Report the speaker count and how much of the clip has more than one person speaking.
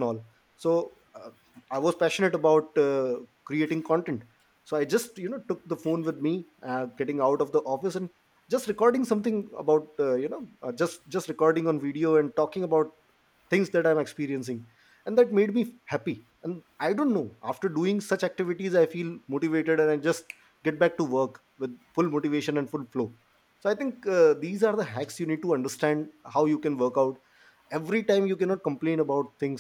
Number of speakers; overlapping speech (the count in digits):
1, no overlap